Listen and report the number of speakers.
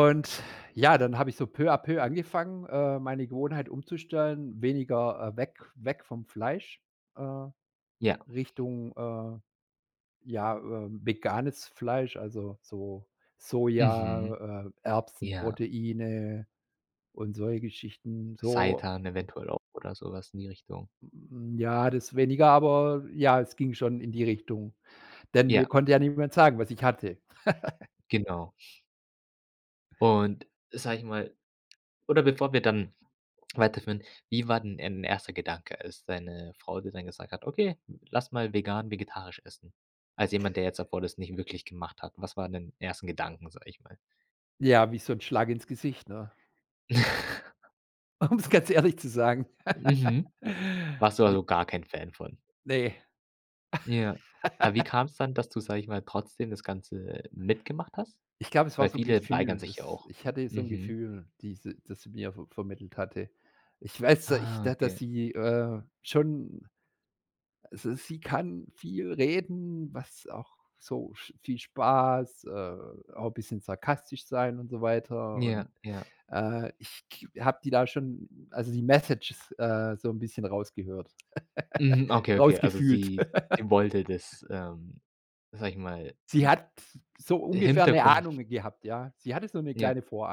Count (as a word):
two